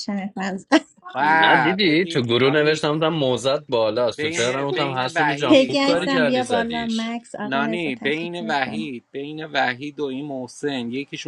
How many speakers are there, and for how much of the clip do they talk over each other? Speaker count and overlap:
3, about 53%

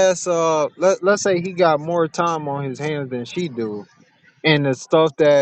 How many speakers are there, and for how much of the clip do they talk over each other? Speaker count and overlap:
1, no overlap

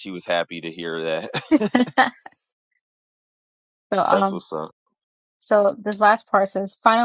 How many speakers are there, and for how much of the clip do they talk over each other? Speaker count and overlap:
2, about 4%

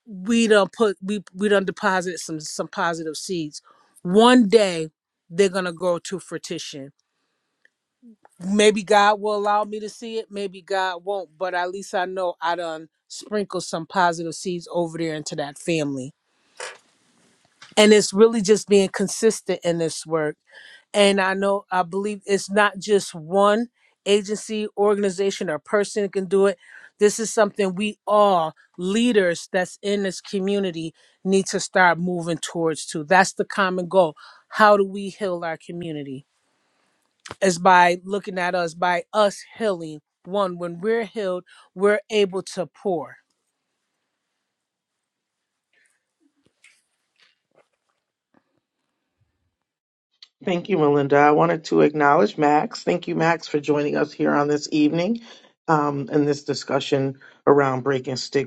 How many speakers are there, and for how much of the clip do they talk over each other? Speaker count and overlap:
2, no overlap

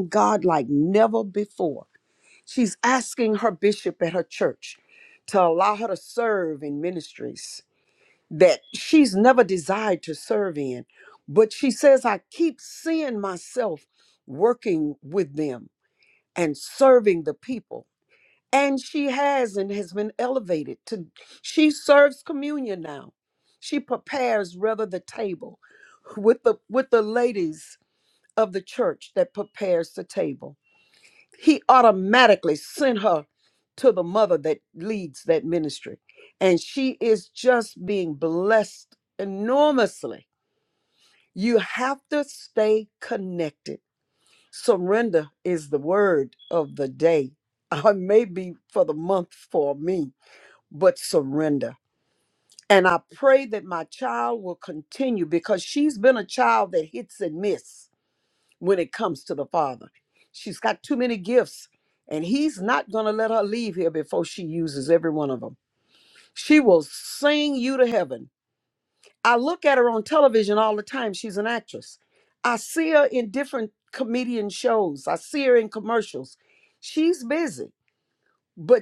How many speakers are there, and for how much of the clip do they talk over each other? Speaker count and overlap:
1, no overlap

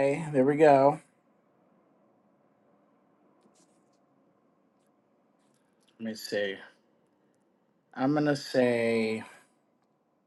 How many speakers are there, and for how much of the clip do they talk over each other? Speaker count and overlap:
1, no overlap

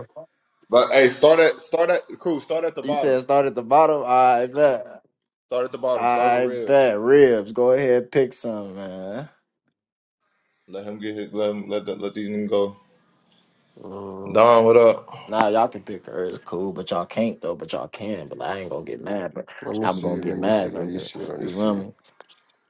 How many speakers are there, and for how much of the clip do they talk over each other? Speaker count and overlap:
3, about 13%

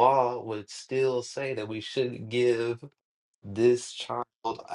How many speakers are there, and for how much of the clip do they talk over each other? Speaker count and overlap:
1, no overlap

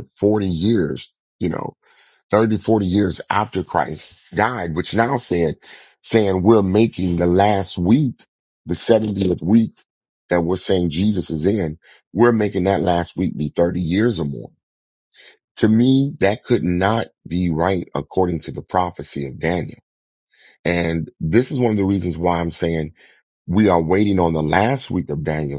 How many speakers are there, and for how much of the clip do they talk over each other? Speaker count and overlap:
1, no overlap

